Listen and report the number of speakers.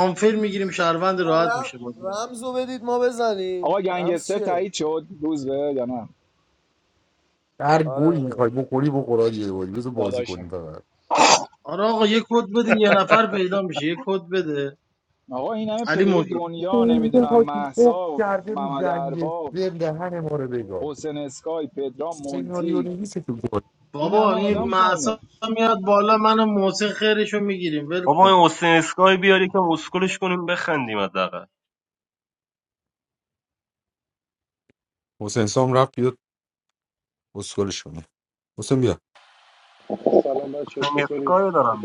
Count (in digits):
6